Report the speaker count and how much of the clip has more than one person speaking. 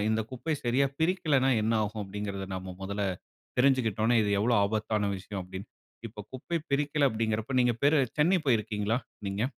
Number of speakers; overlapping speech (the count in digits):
1, no overlap